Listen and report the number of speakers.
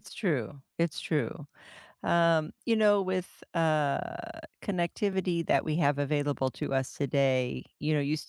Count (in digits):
1